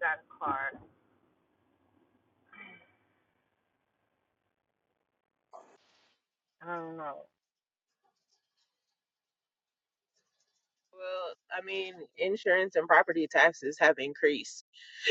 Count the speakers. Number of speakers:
2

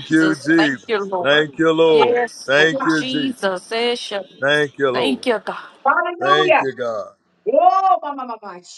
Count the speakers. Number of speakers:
3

